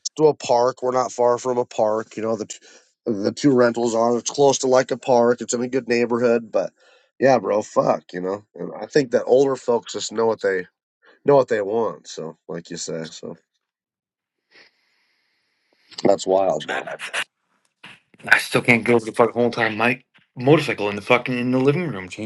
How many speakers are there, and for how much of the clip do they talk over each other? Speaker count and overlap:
2, about 1%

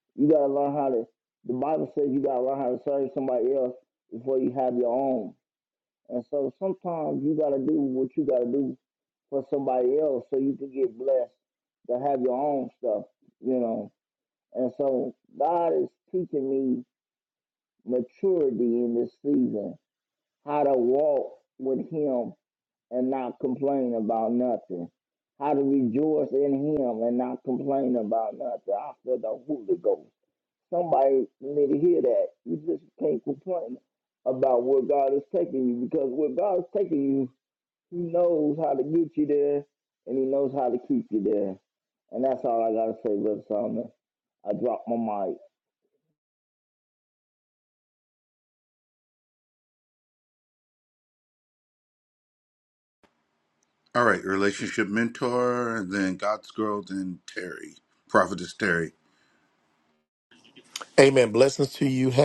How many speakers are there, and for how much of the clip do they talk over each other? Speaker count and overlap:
3, no overlap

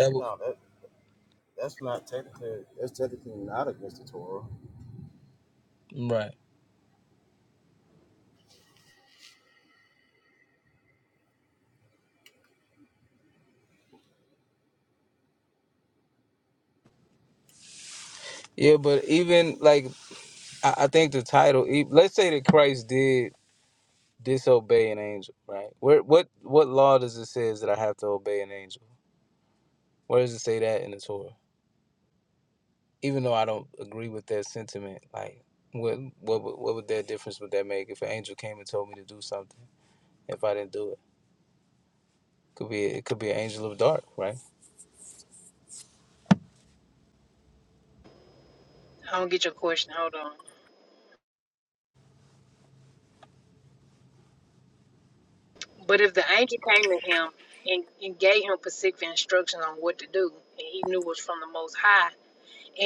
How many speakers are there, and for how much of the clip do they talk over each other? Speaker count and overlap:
3, no overlap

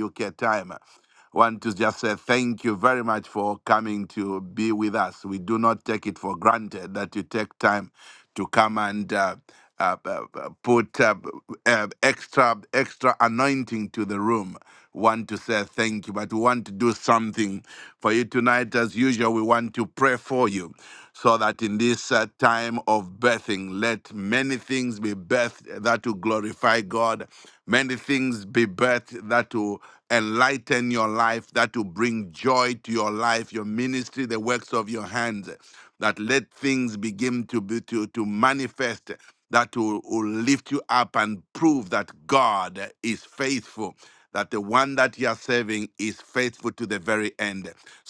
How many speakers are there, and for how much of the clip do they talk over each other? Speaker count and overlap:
1, no overlap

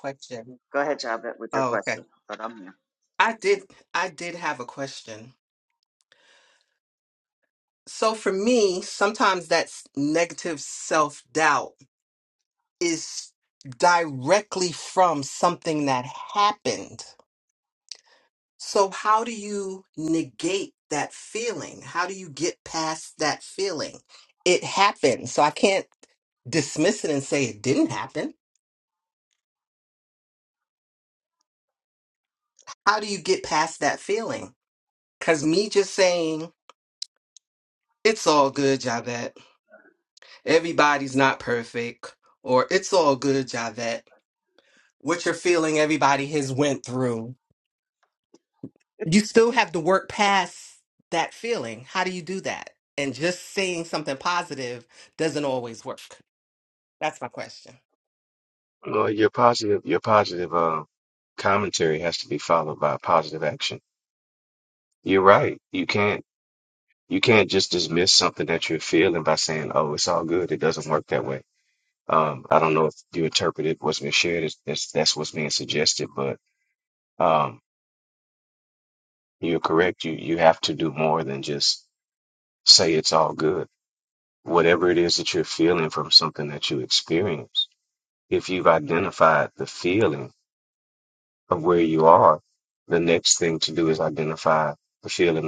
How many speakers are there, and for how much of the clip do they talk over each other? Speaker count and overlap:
3, under 1%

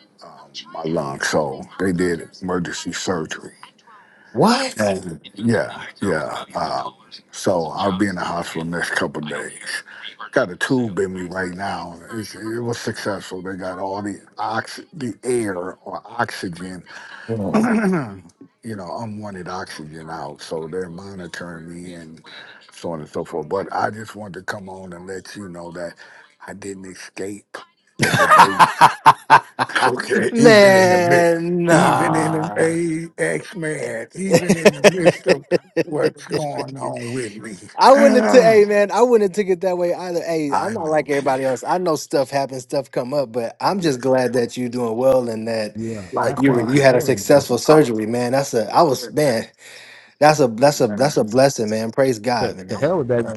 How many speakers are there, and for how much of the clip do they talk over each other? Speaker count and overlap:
3, about 12%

